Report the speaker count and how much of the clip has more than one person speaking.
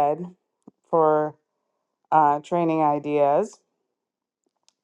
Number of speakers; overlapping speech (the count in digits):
1, no overlap